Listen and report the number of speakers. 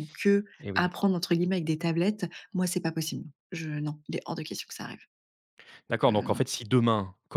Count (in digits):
2